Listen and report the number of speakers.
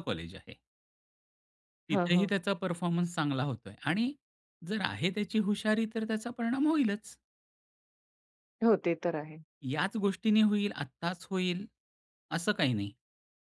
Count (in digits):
2